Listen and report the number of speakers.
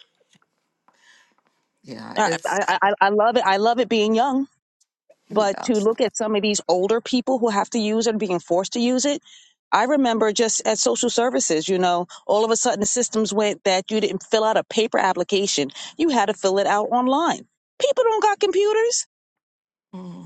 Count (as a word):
two